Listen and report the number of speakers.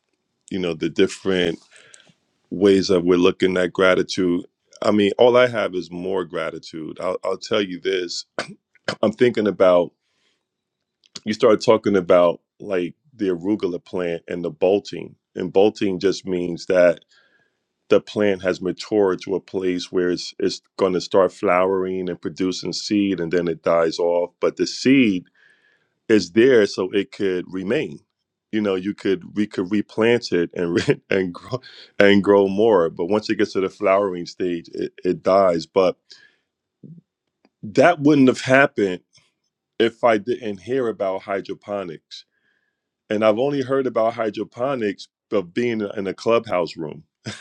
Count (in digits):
1